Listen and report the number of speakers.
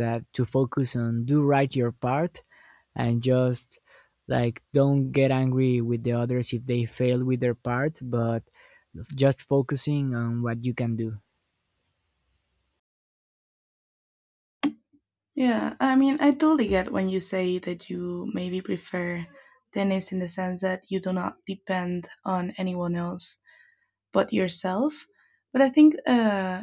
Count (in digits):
2